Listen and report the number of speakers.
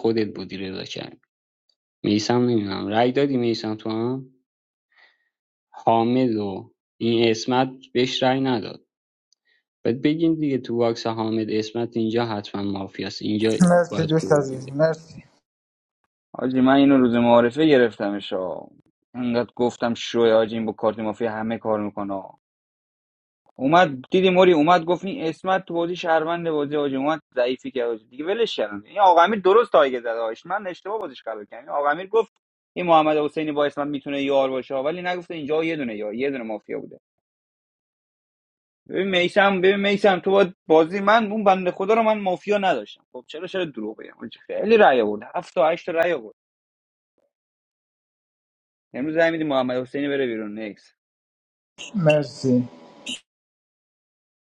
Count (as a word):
three